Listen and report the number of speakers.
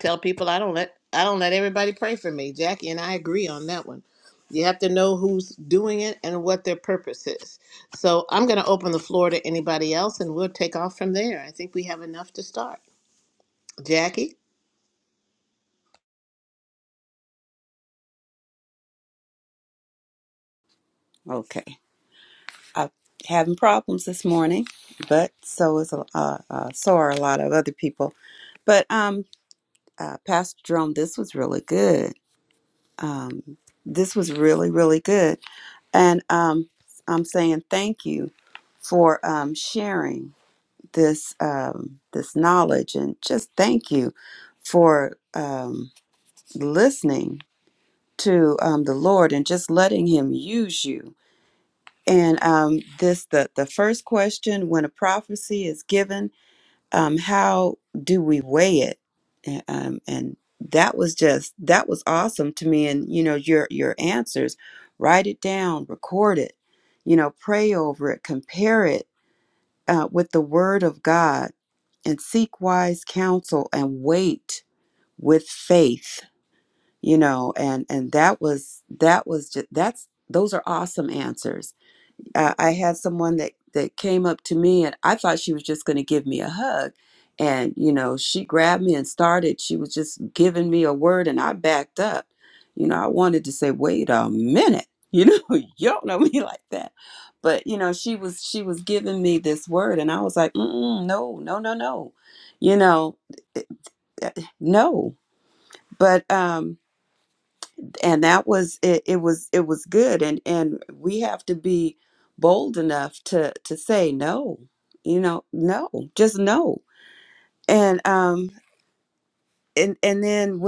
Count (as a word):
two